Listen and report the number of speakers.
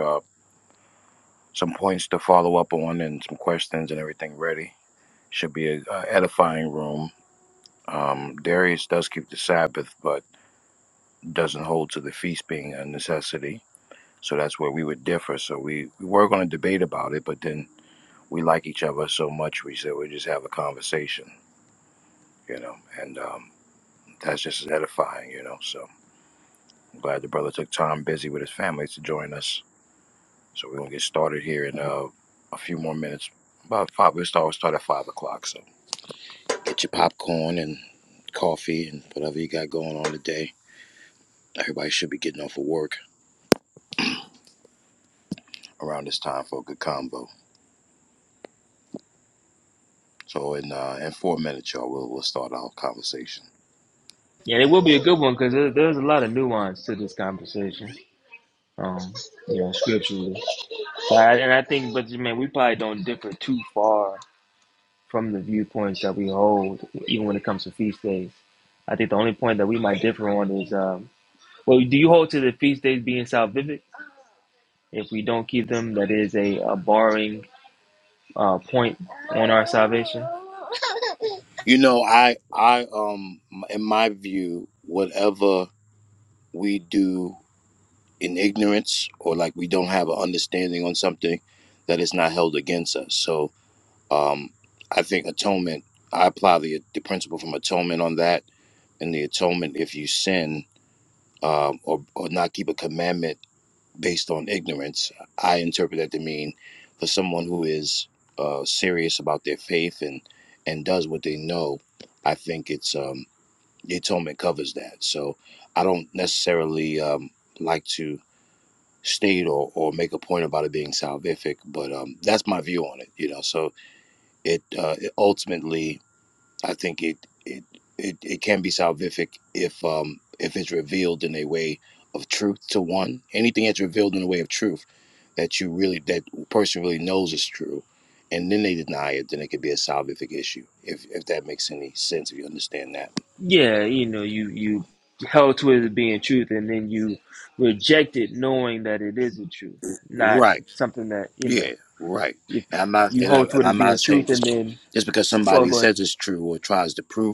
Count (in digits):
2